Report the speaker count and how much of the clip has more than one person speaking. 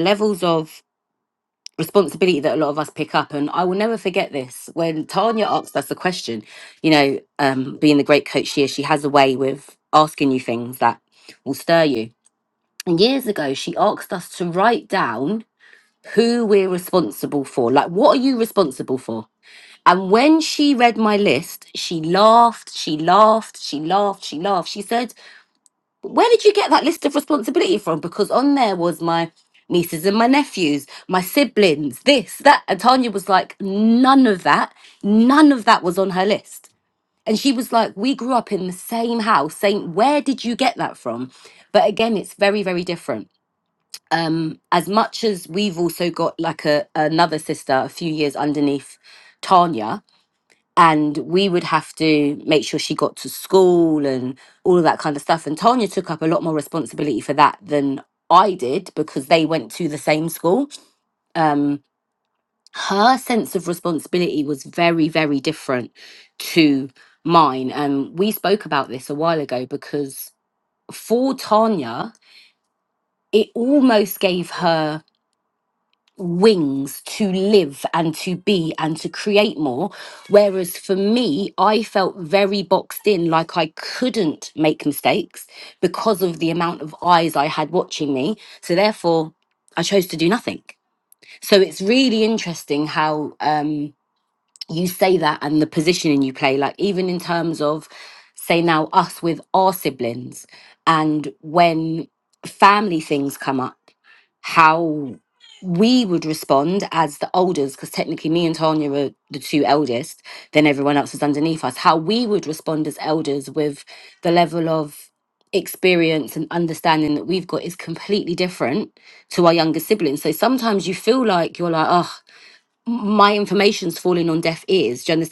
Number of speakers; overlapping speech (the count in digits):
1, no overlap